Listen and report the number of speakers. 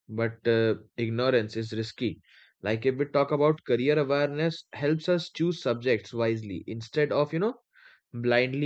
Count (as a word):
one